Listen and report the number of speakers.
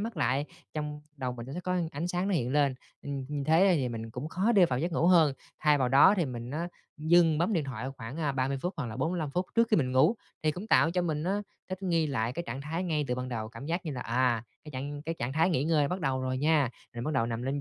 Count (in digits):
1